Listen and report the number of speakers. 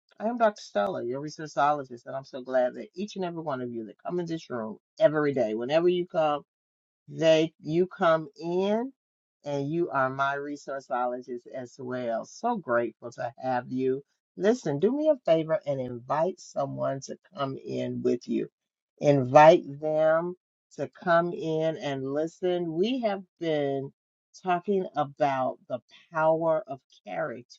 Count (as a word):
one